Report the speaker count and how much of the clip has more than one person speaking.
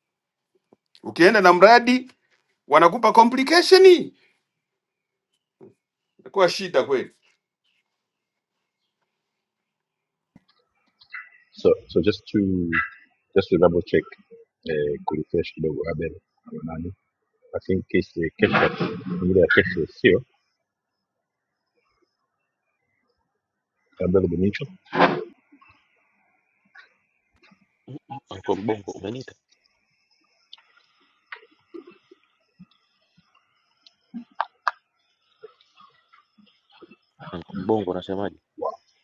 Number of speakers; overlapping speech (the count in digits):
3, no overlap